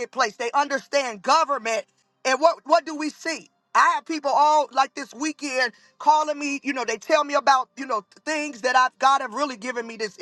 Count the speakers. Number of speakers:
1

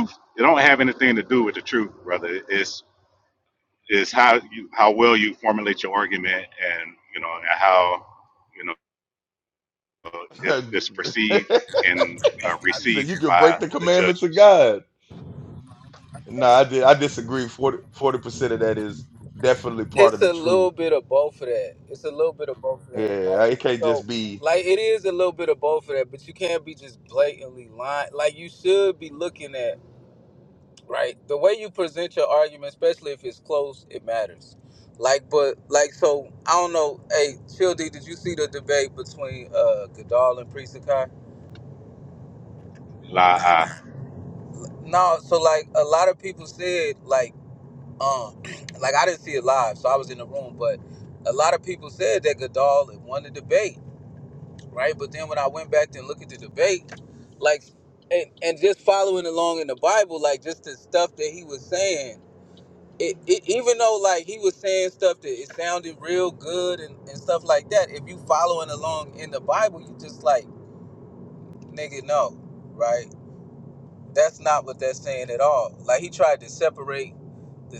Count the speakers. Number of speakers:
3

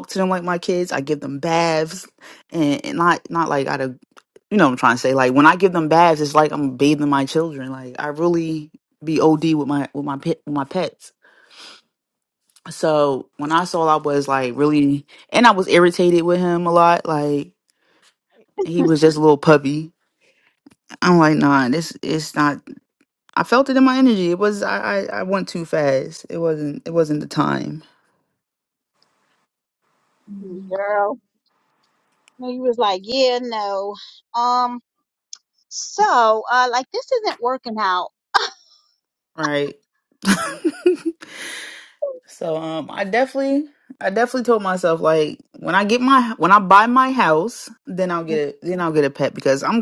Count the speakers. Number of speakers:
2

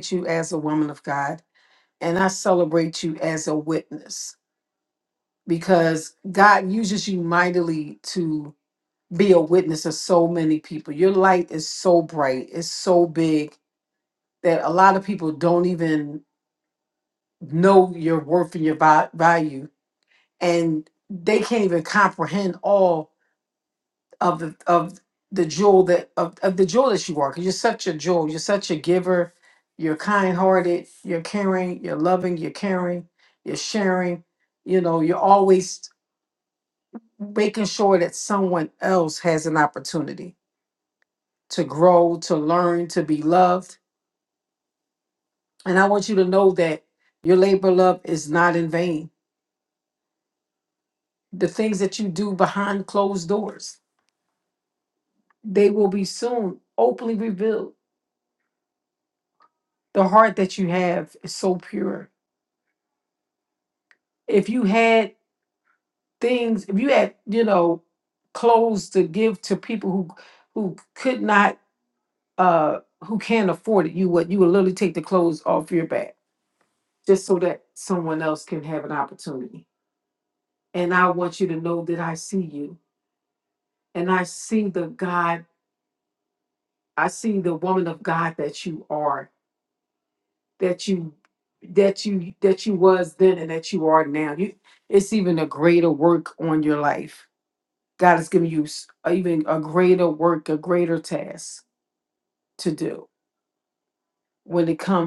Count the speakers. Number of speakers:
1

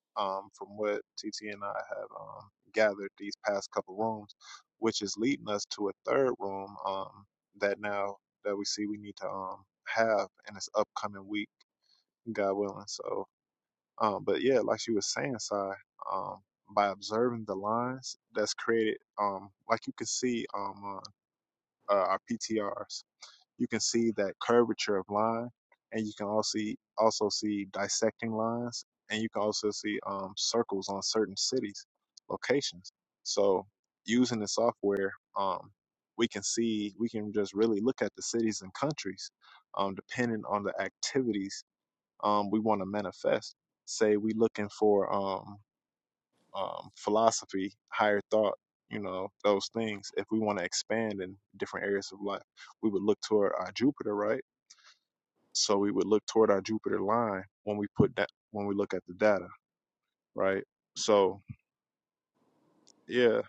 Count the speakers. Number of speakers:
1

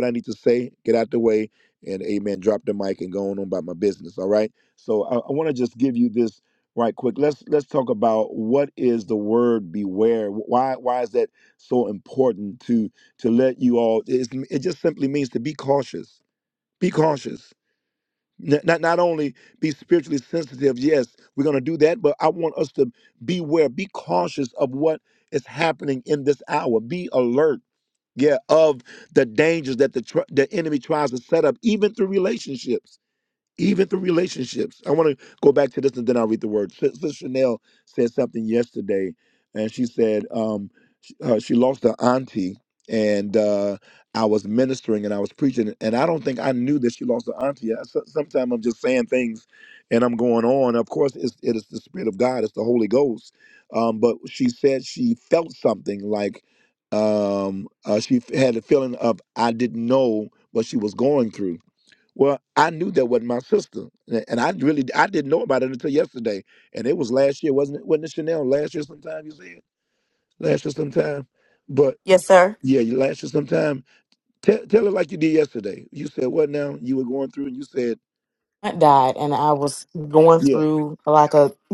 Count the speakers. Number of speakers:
2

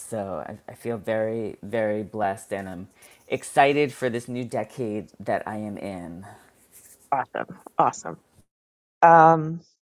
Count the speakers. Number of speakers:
2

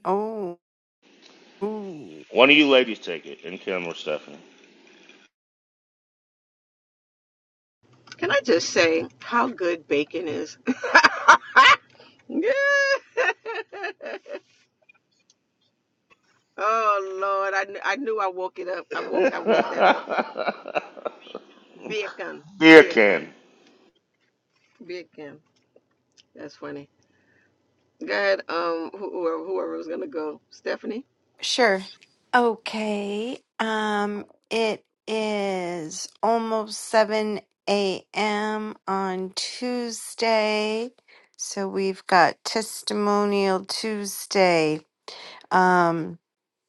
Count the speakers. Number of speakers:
3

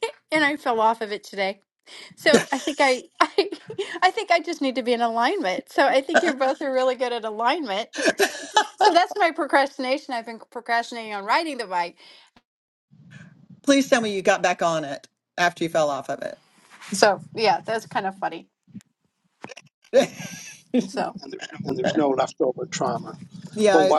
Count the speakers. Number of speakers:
3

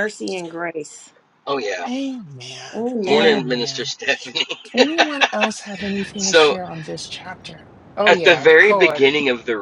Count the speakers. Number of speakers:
3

